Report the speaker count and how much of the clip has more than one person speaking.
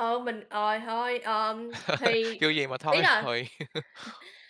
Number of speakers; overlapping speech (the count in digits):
2, about 11%